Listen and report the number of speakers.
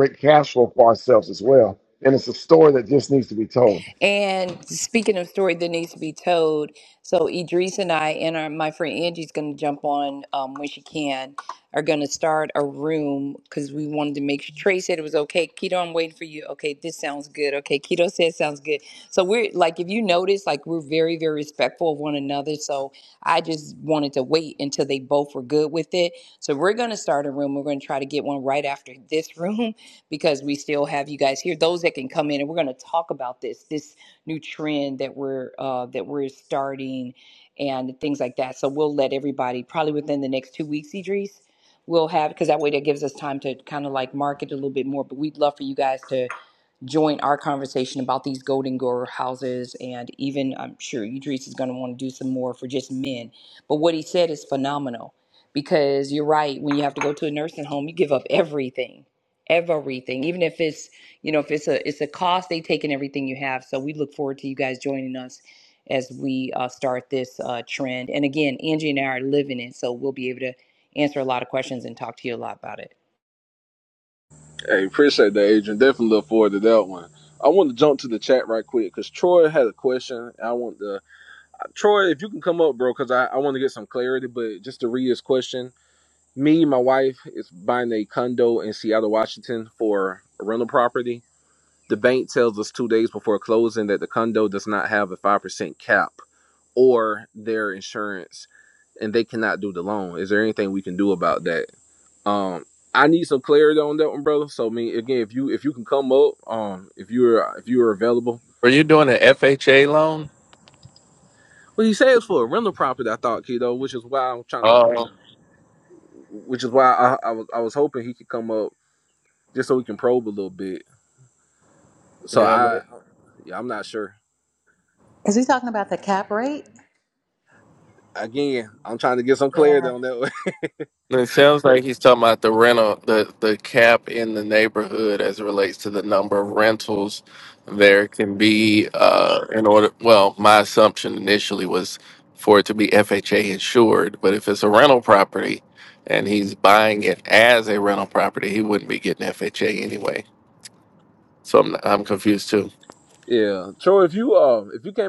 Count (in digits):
5